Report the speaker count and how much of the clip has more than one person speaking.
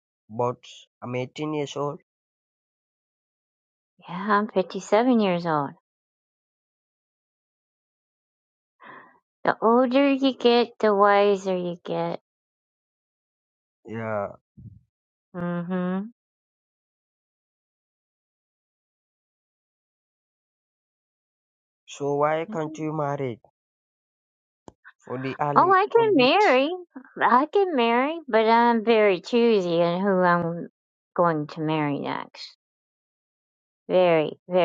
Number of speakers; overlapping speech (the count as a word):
two, about 3%